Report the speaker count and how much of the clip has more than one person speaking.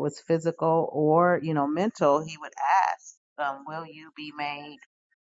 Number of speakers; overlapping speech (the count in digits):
1, no overlap